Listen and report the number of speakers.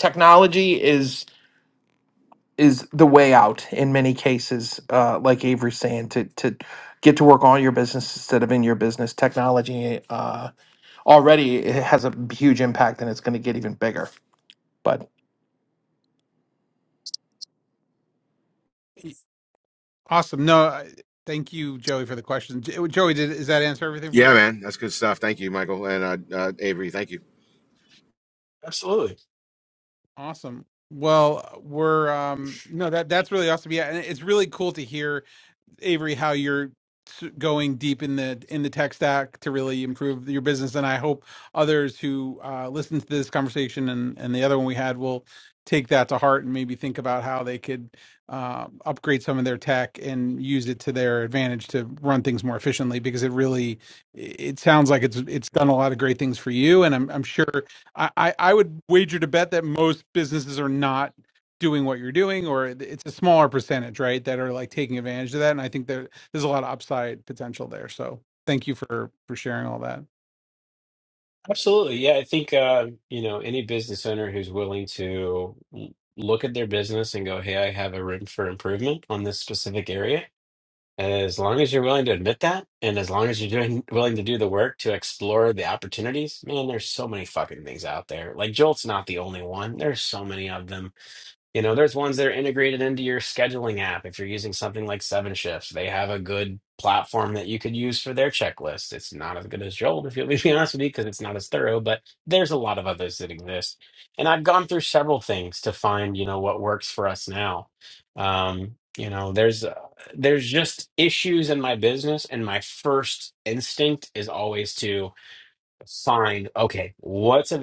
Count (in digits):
4